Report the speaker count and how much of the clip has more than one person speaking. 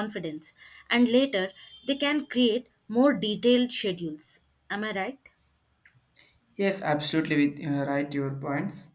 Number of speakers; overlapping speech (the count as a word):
two, no overlap